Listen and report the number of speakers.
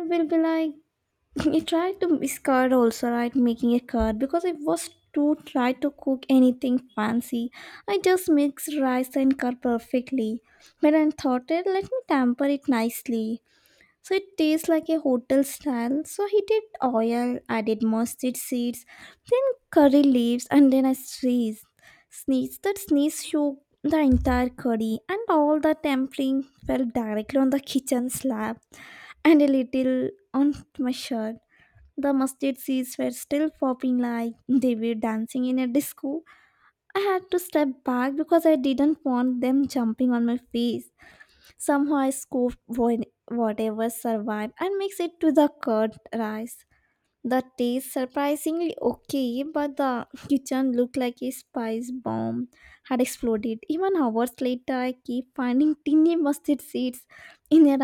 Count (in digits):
1